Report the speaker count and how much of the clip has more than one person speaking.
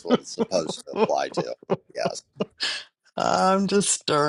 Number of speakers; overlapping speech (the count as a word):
two, no overlap